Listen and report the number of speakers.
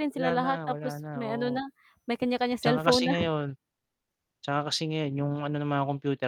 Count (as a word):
two